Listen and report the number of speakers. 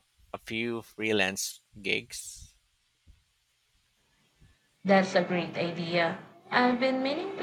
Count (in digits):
2